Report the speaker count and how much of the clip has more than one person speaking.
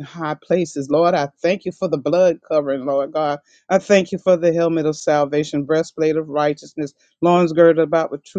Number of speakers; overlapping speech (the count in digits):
1, no overlap